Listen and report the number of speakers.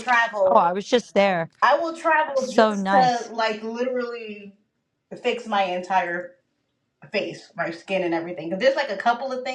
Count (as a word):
two